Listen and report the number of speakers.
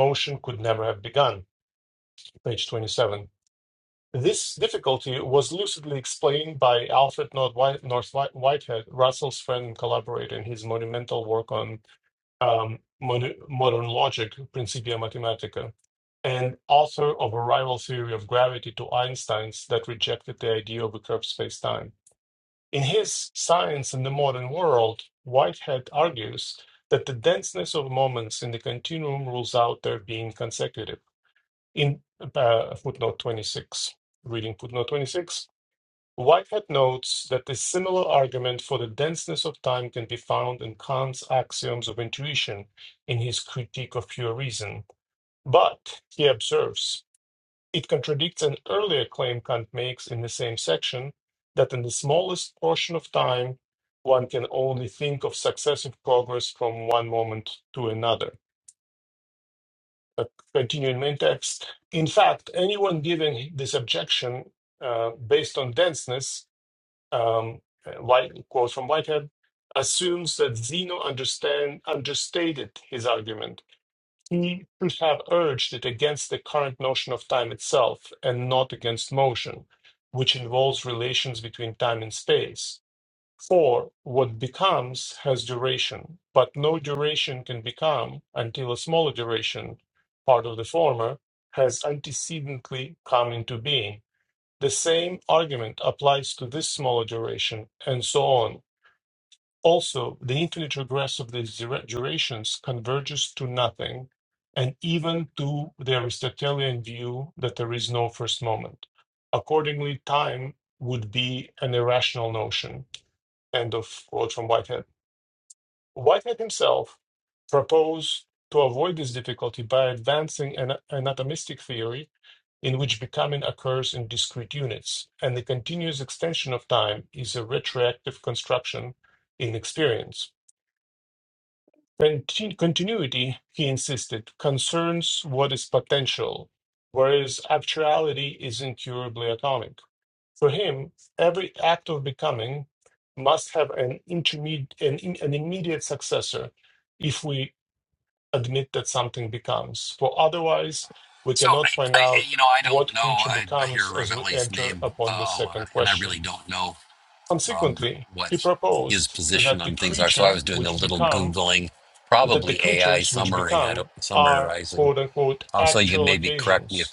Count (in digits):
2